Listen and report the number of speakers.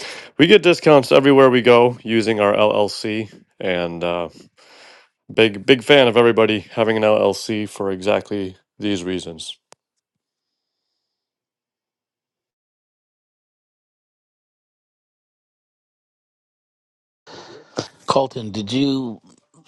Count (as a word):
two